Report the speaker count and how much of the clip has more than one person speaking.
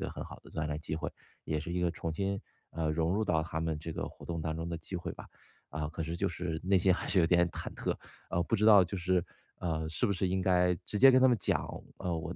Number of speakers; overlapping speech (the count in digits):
1, no overlap